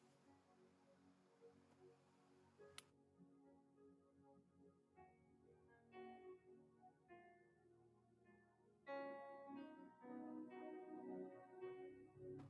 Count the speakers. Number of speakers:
zero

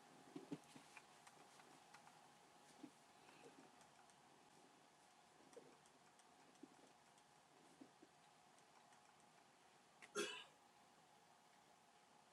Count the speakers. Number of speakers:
zero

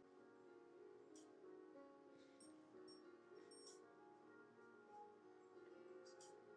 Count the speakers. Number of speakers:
zero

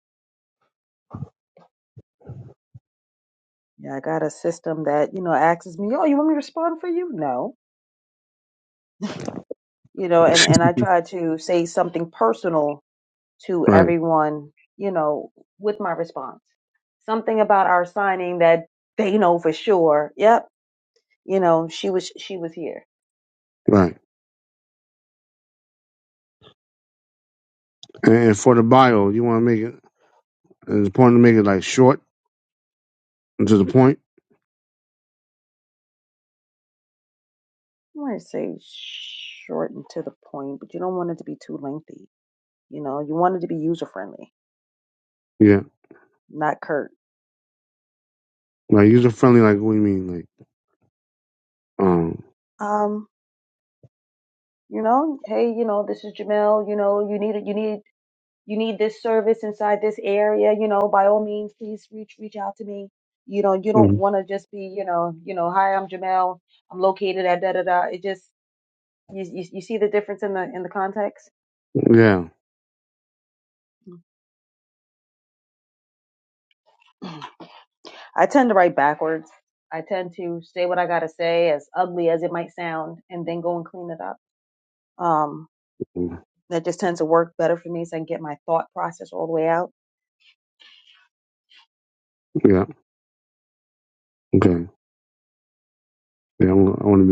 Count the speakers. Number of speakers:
two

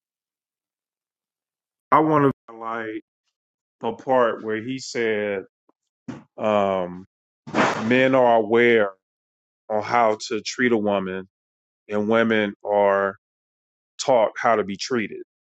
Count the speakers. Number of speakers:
one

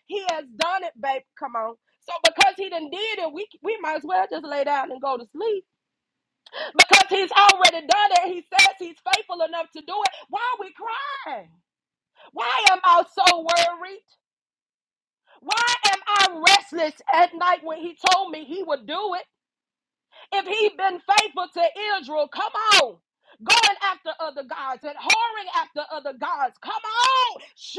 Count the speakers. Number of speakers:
one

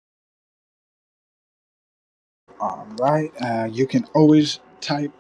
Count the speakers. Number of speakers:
one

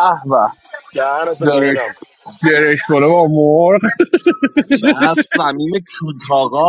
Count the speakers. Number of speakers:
three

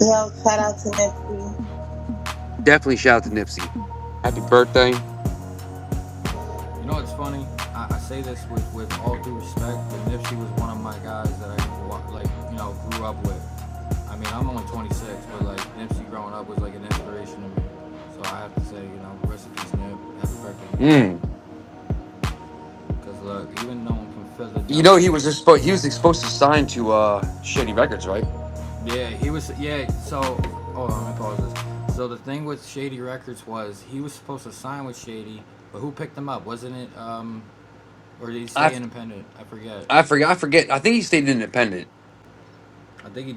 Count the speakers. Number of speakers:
three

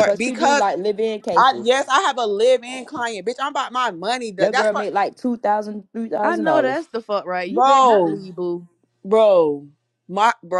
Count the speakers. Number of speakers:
three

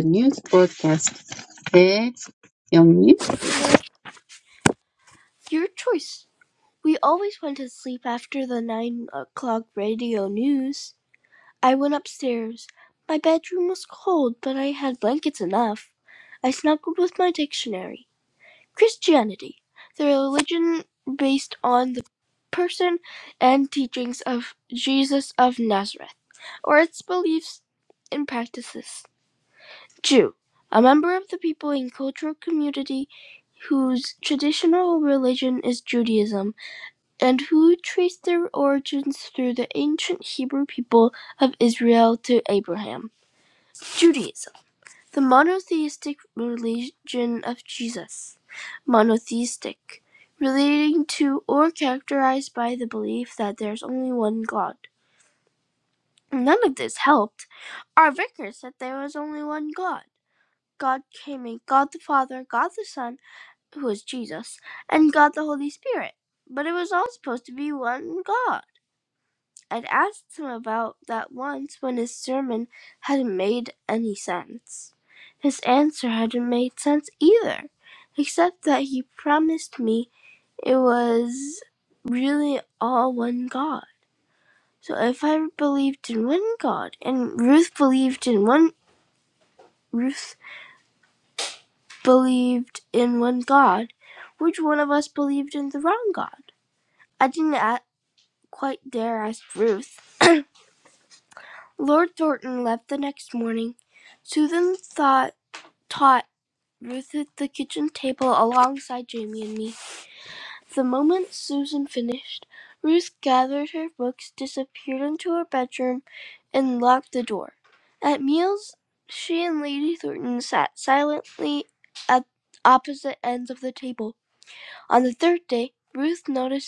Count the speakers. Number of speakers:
two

